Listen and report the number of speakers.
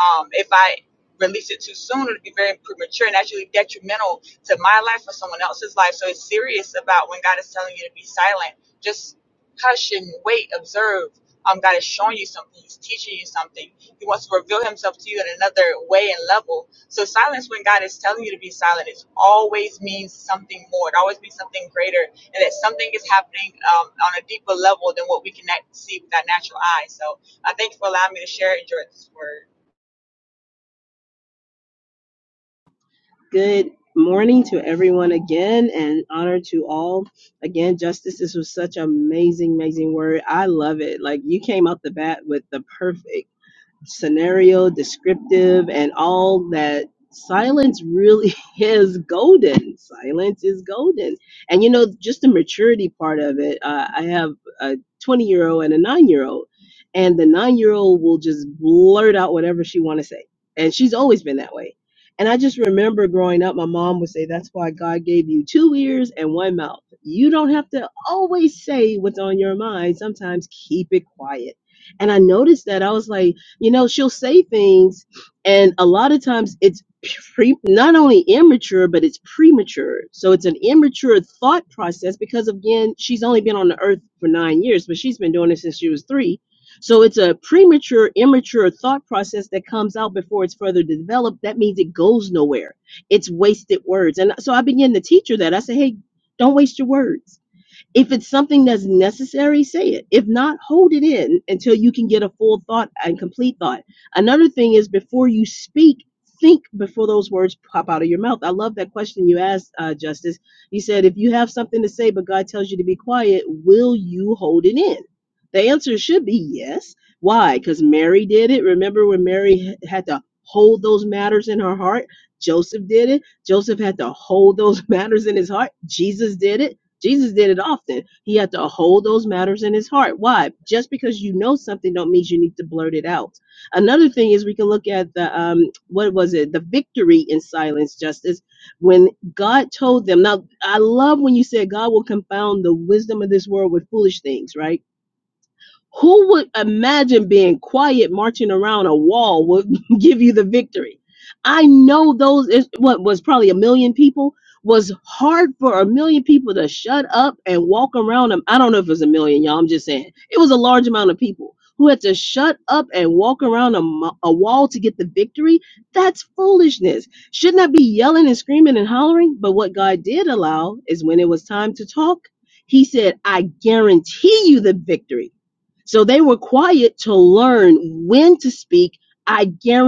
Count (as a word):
two